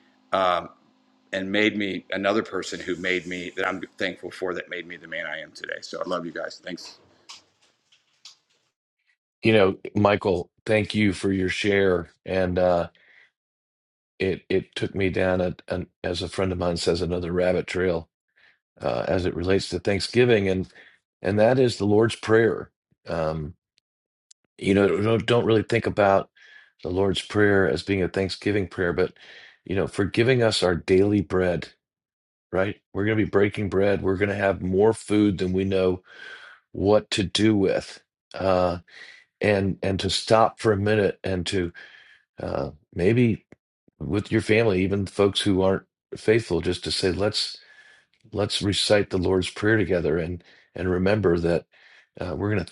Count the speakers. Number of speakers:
2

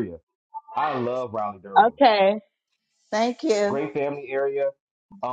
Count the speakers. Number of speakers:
2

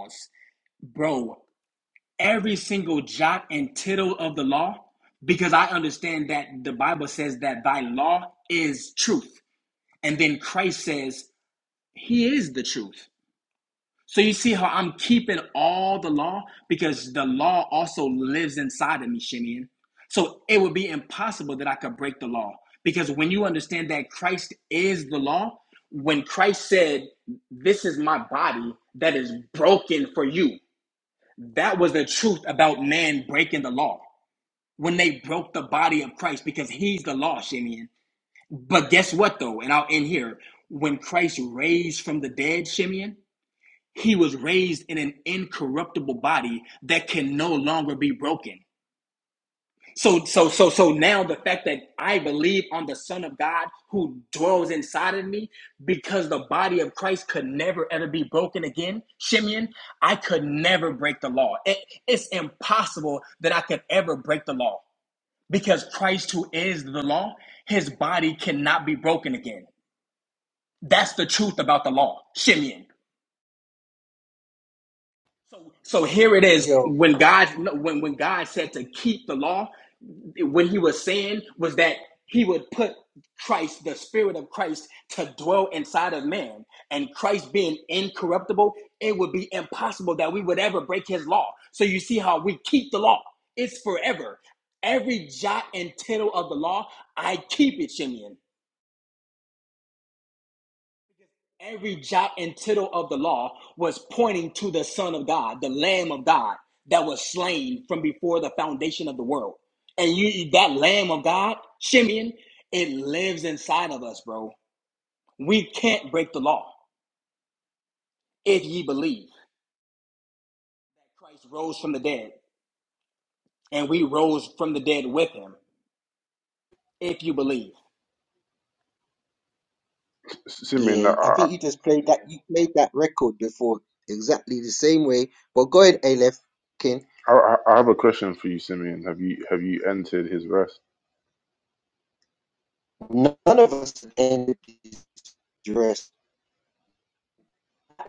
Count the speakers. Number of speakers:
3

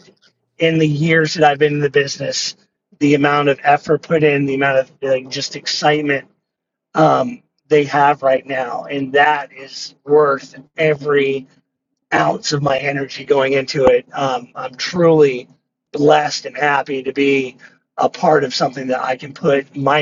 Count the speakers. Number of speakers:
1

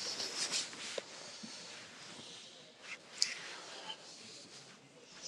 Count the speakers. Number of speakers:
0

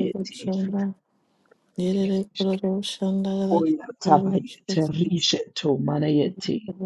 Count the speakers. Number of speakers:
2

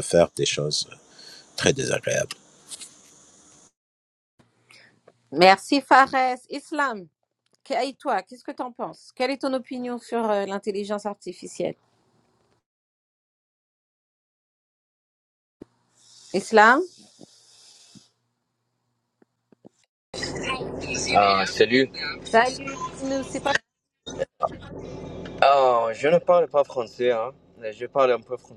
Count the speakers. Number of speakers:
3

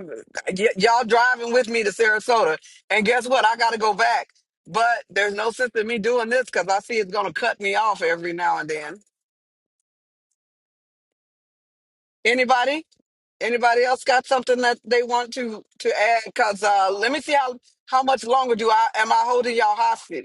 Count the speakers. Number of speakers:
1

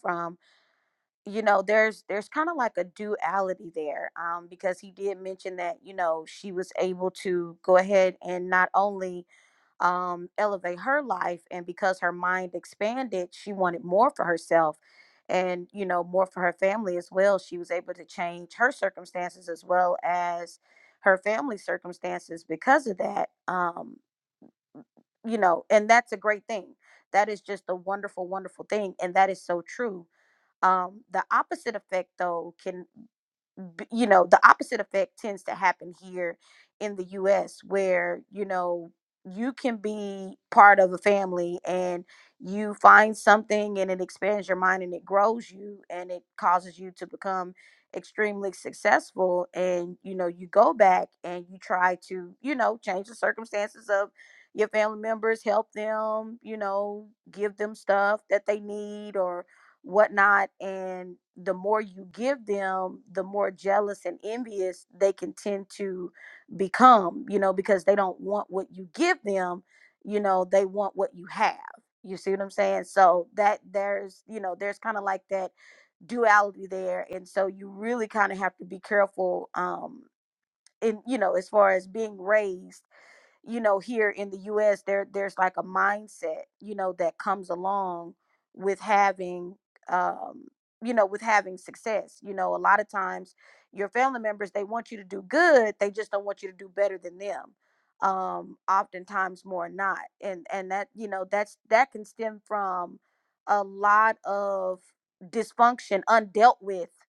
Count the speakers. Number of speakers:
1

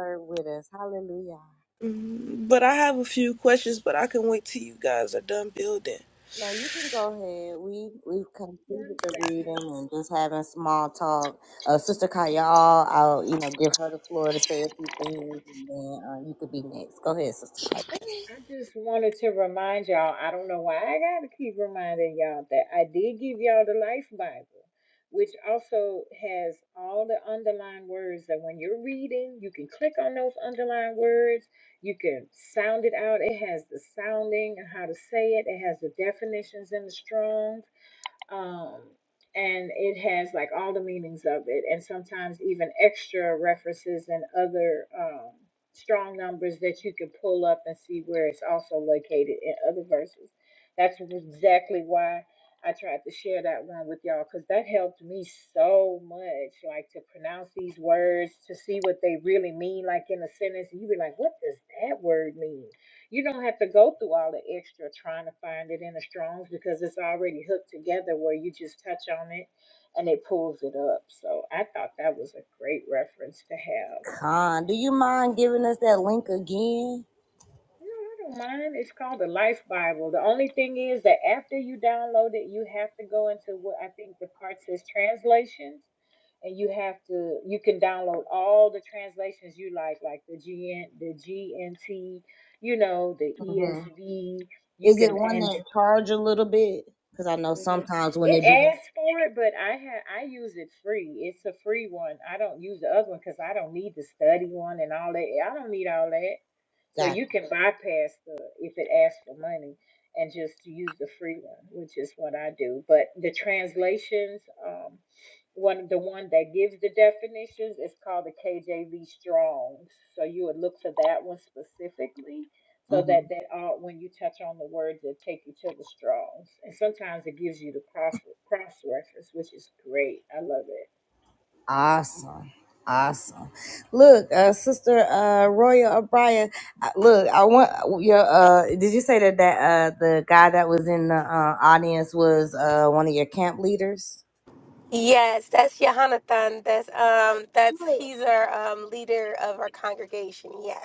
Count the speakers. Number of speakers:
4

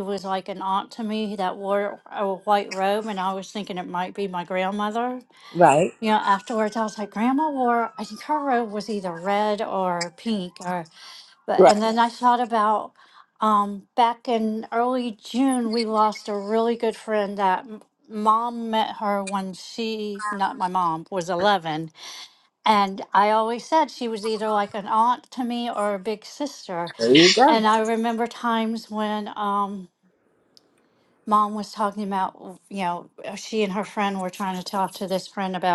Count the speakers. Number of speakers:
2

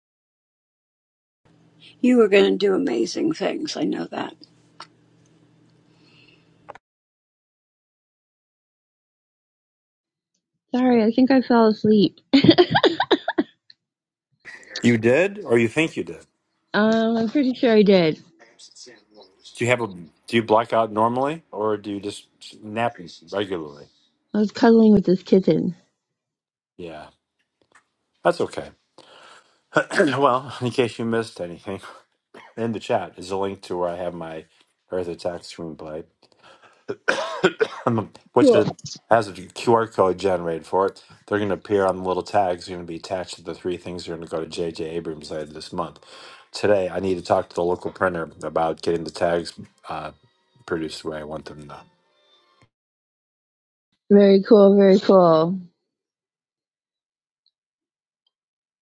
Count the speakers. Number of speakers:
3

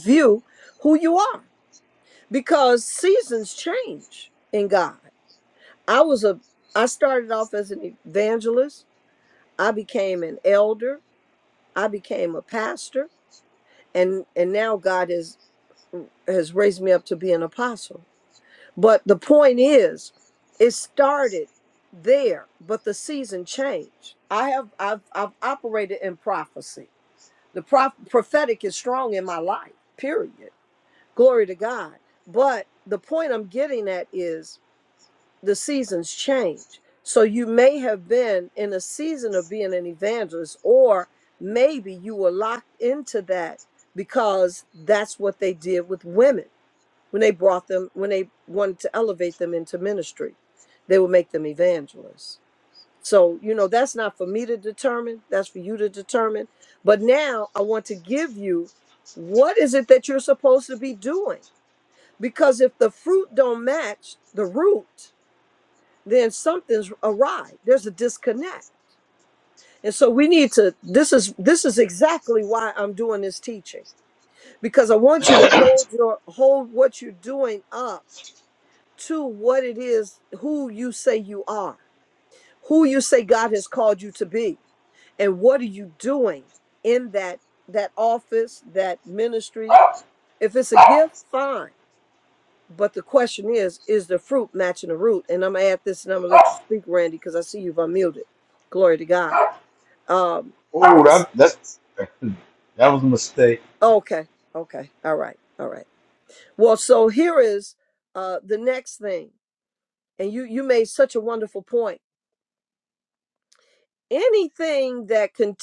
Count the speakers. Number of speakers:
2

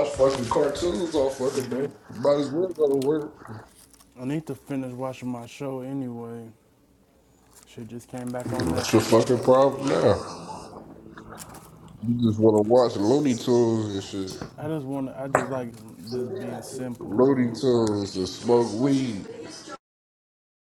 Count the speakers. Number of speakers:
2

